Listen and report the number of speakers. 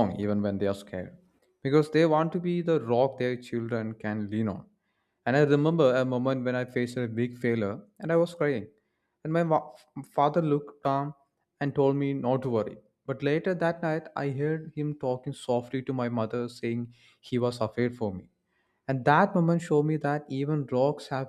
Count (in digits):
1